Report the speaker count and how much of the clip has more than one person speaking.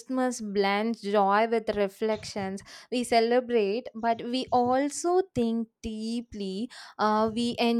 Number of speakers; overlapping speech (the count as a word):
one, no overlap